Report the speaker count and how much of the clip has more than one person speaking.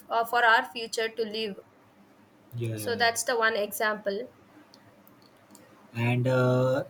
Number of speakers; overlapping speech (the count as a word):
two, about 4%